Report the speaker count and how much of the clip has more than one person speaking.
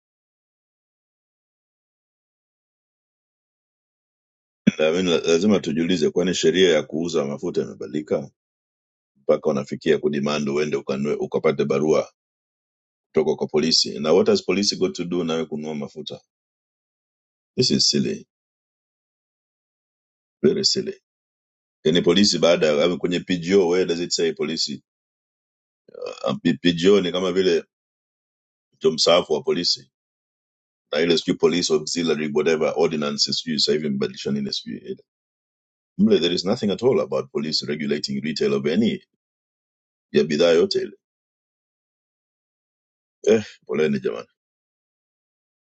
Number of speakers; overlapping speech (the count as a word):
one, no overlap